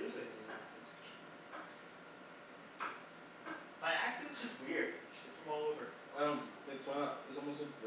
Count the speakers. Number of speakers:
2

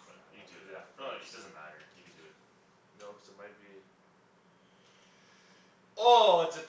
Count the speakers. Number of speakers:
2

